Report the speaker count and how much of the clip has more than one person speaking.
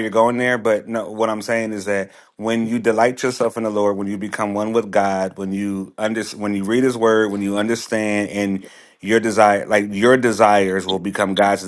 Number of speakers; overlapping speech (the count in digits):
1, no overlap